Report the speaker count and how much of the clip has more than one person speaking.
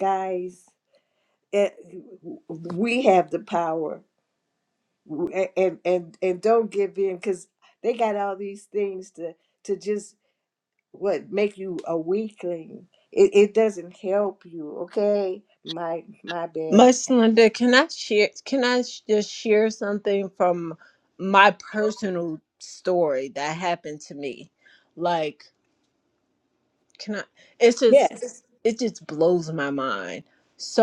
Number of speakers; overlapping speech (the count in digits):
2, about 1%